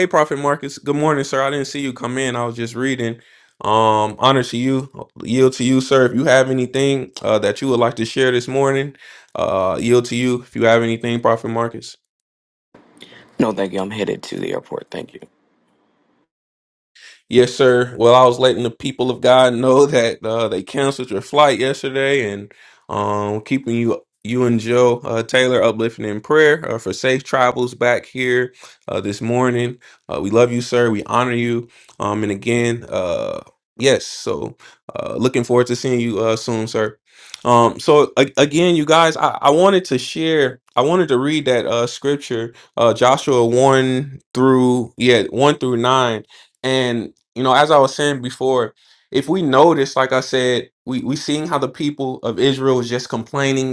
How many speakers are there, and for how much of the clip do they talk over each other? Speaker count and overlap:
two, no overlap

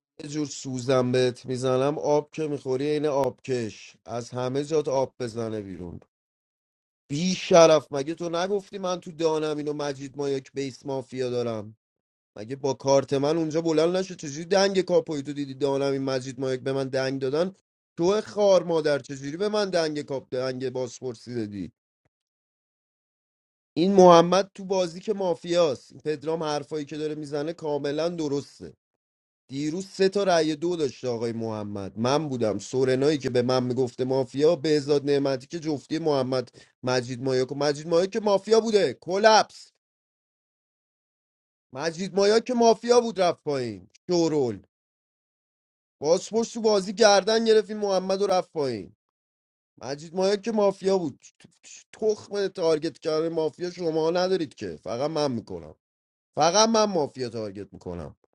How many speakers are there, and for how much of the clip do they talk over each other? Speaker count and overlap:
one, no overlap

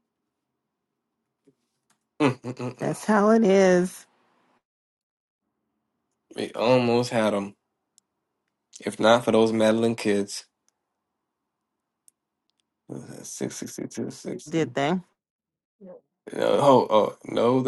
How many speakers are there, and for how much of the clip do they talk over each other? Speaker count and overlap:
two, about 2%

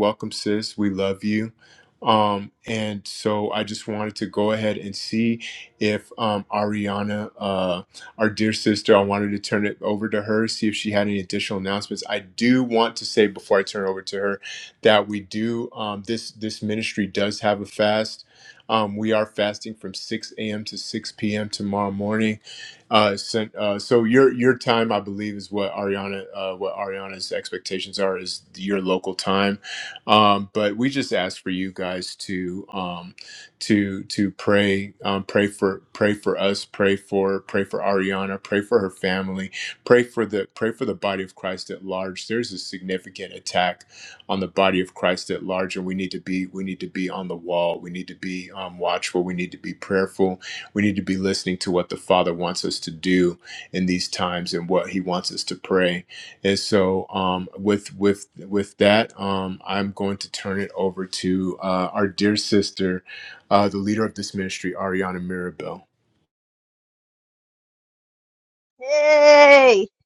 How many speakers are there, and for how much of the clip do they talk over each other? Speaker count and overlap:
two, no overlap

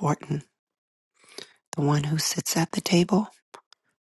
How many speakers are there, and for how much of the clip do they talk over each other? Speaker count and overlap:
one, no overlap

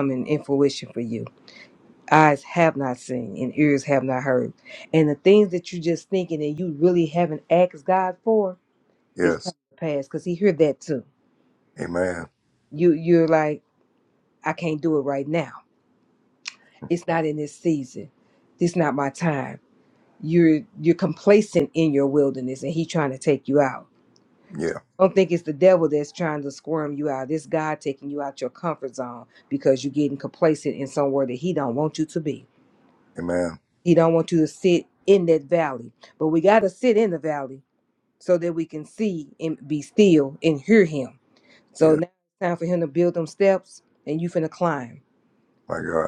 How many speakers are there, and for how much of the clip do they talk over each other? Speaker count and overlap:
two, about 1%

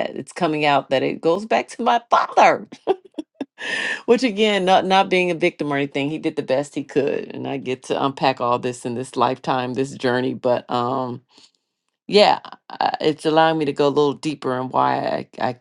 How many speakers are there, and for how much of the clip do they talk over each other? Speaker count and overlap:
one, no overlap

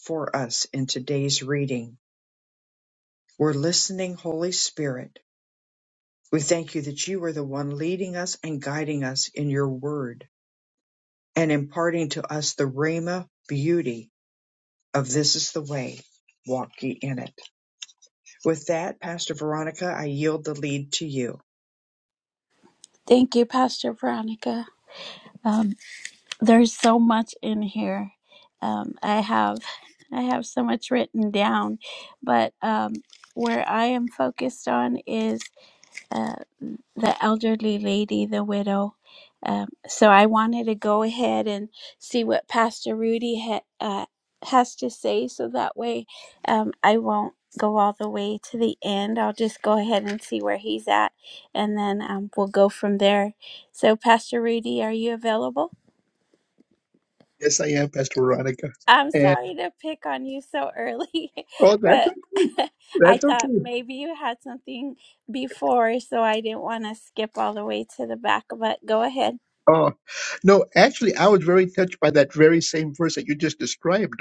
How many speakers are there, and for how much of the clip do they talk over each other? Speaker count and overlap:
three, about 2%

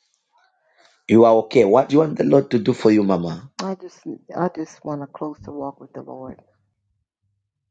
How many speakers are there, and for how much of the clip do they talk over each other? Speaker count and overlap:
two, no overlap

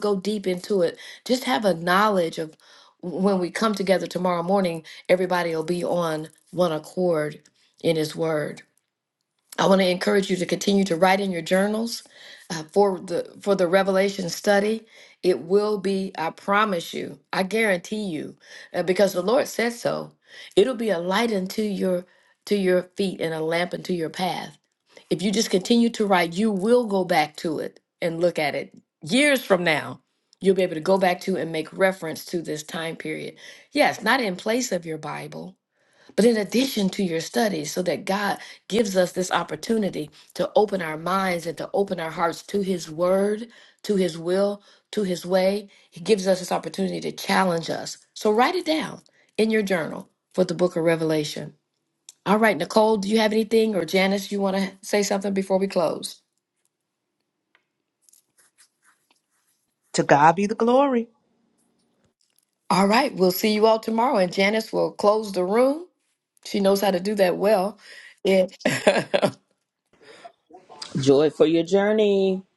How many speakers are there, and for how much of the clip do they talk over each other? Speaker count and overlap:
three, no overlap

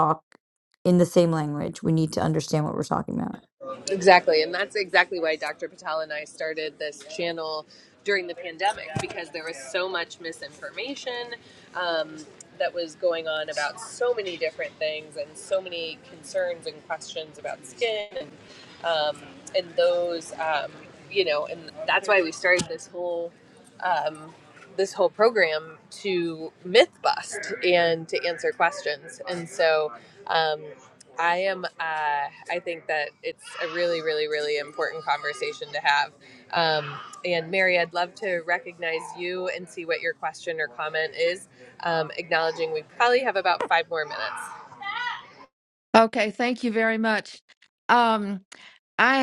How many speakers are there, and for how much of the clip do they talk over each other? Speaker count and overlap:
three, no overlap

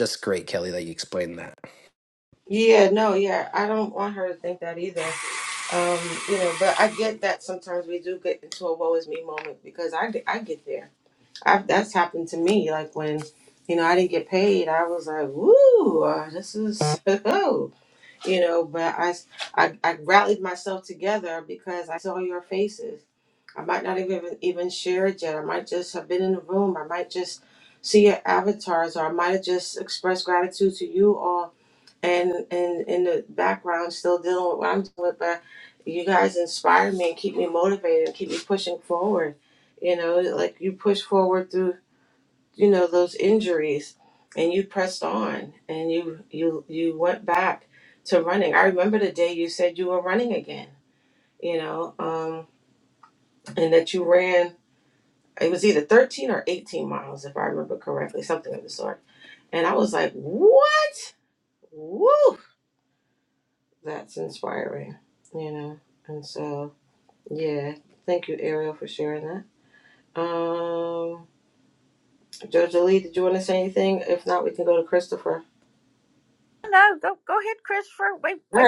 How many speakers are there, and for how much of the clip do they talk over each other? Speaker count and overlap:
three, under 1%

